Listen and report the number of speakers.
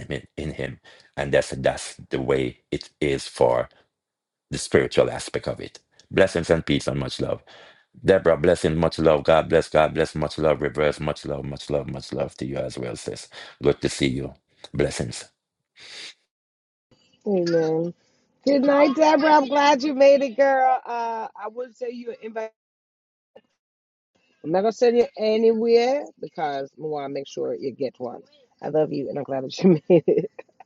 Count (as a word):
two